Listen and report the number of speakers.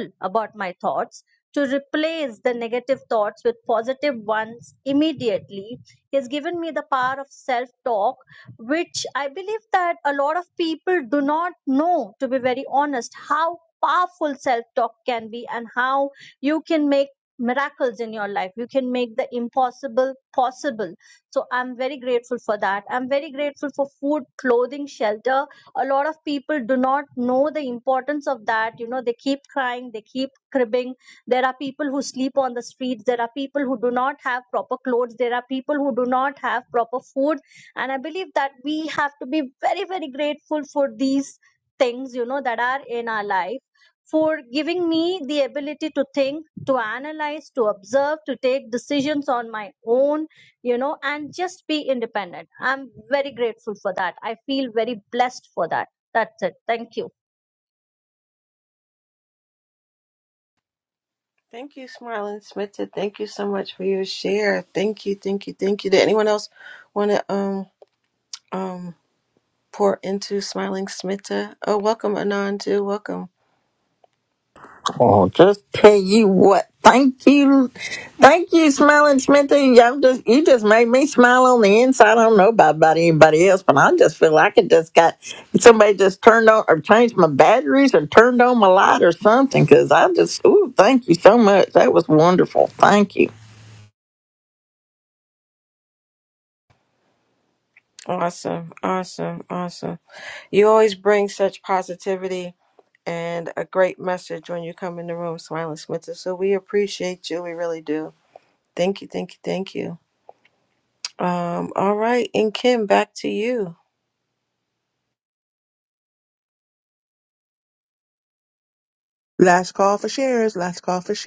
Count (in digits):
4